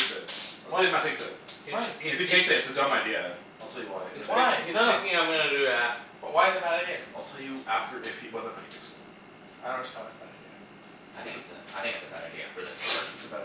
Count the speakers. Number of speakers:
four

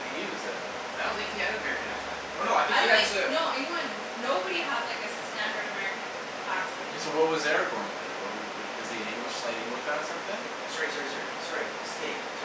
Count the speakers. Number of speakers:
three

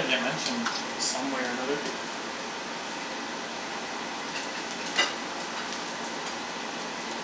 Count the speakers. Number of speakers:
one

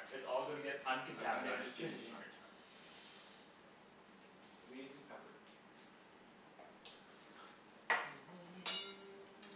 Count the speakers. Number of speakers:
two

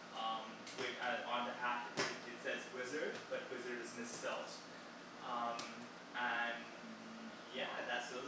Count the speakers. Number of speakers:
one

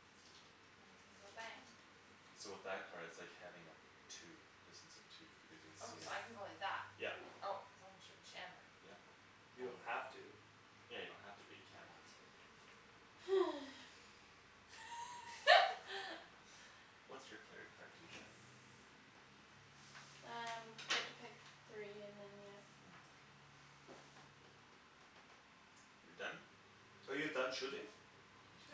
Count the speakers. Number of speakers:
four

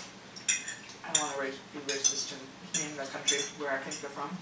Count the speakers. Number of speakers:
one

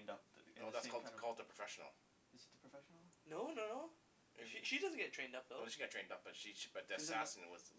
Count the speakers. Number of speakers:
three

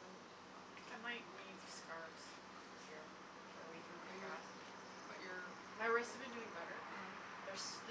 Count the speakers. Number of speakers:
two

